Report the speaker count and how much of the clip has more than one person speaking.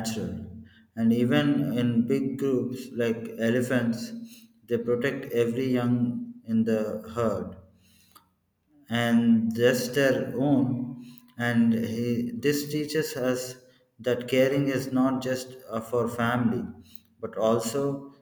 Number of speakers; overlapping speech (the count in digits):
1, no overlap